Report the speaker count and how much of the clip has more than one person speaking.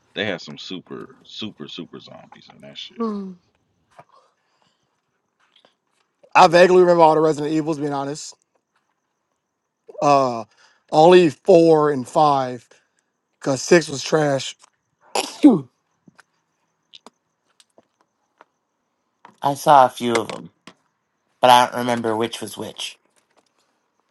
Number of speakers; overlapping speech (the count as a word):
three, no overlap